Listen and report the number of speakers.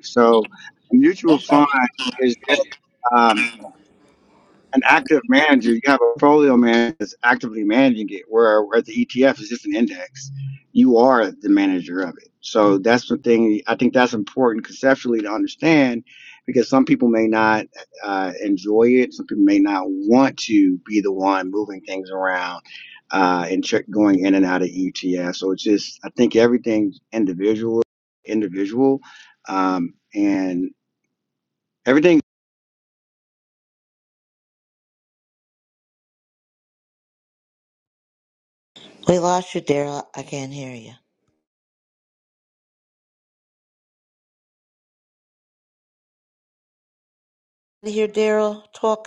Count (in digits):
2